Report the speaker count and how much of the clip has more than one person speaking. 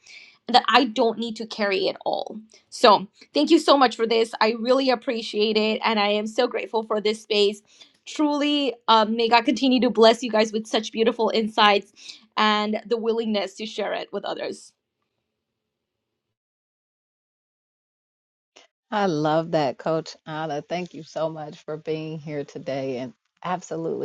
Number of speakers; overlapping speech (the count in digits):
2, no overlap